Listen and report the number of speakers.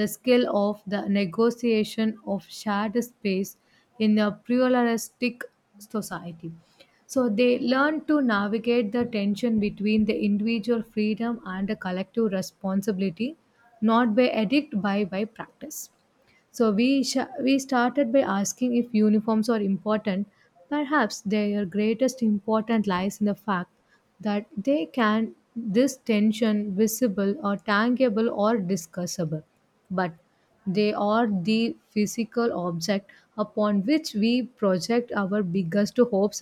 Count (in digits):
1